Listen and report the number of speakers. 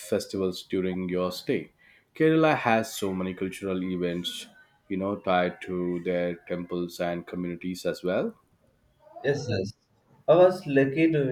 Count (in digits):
2